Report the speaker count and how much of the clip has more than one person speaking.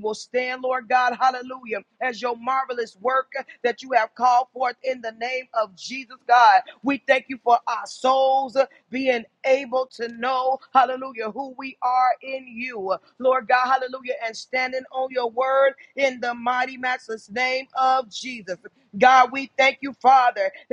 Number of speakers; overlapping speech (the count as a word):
one, no overlap